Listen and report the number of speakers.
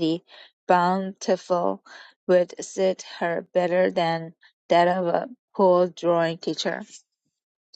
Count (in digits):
1